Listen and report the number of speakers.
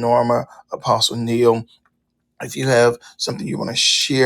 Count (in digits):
1